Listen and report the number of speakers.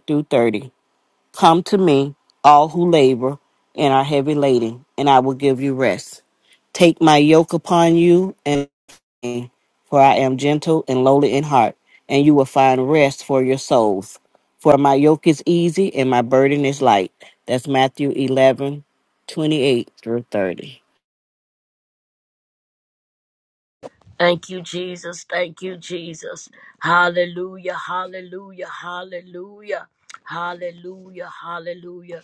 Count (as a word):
two